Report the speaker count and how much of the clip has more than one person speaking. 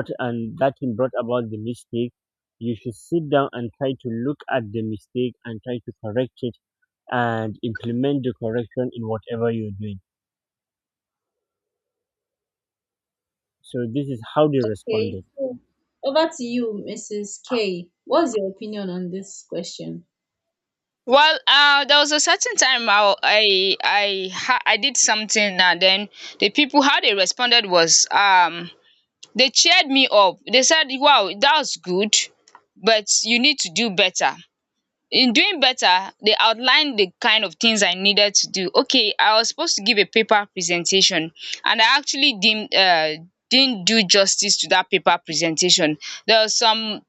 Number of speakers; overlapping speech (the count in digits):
3, about 1%